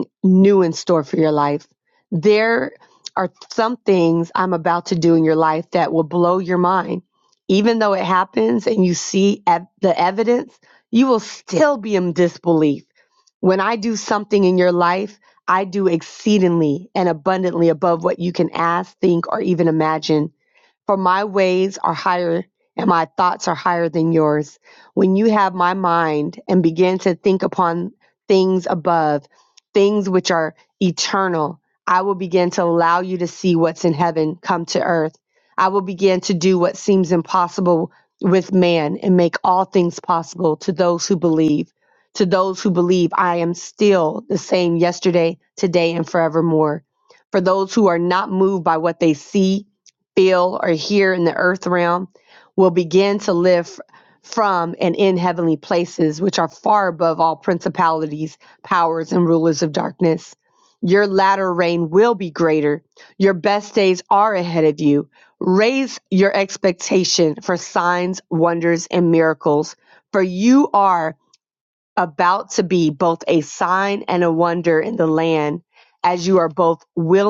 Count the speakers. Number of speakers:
one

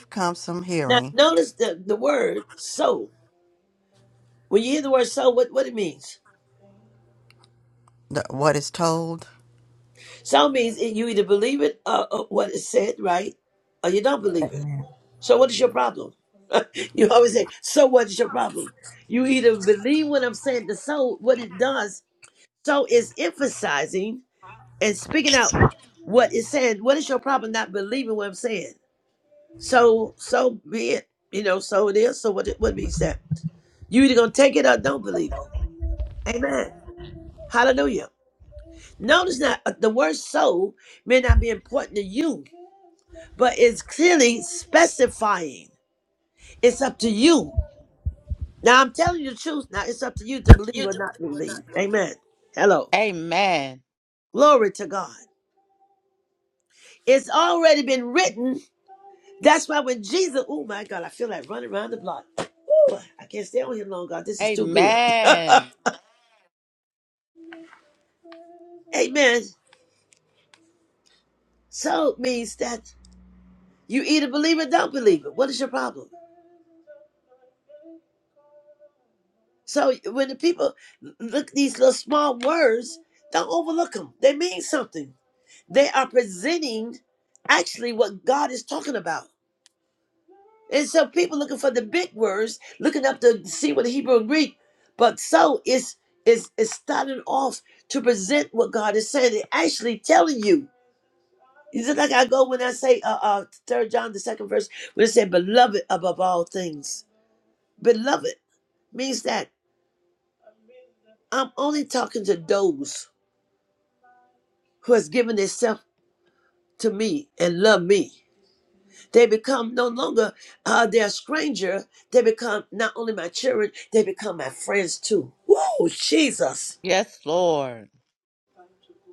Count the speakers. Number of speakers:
three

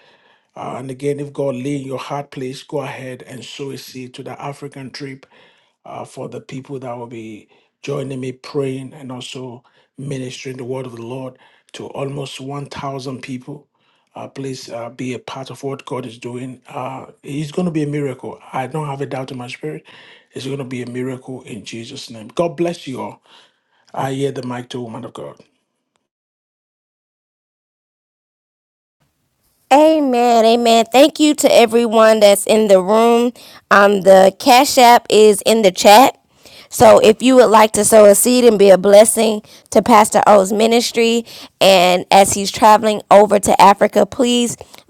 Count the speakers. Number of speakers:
two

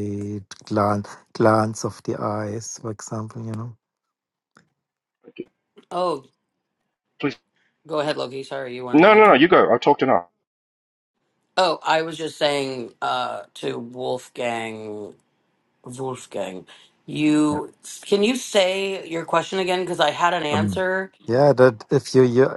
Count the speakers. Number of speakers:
three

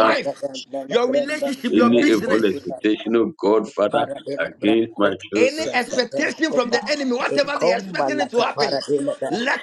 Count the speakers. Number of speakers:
three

